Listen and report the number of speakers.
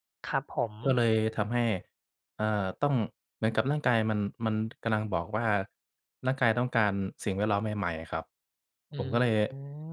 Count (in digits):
2